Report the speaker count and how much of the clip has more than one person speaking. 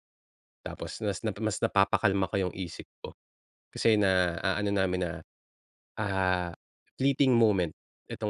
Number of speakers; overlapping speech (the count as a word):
one, no overlap